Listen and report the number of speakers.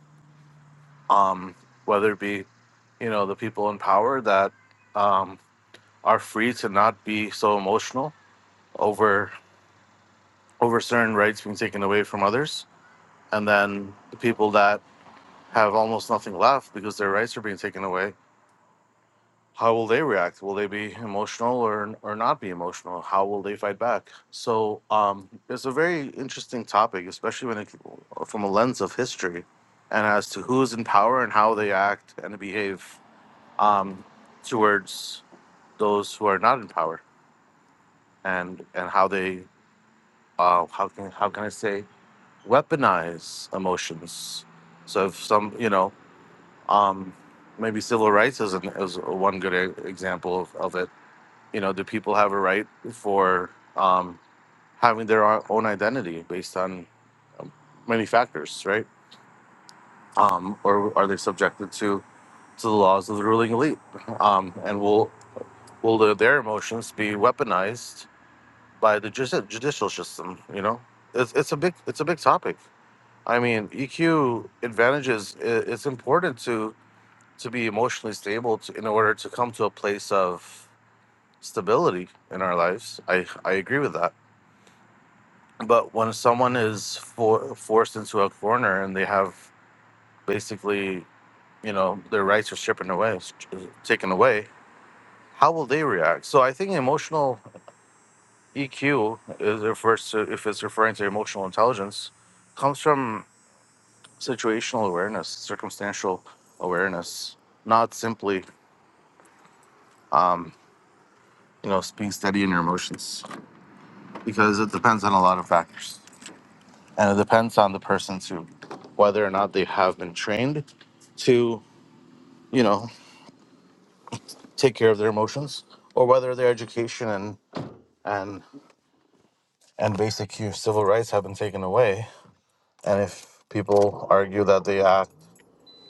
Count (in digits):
1